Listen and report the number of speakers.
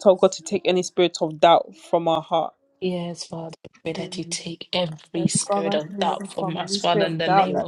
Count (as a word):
two